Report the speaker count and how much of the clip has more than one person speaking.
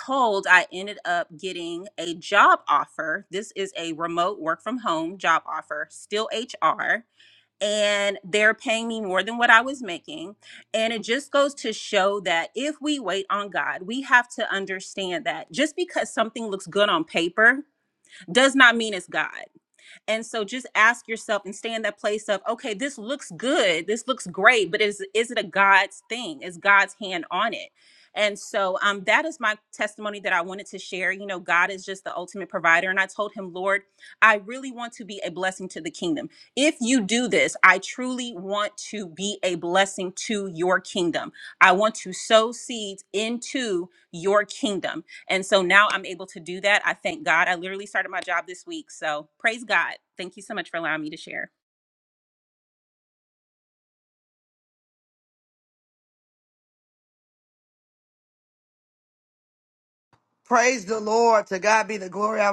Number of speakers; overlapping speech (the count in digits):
2, no overlap